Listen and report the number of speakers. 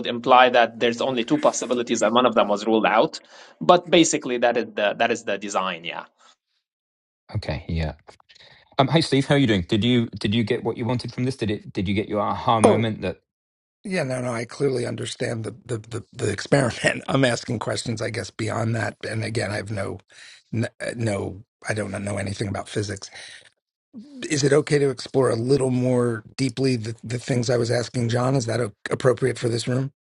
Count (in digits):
3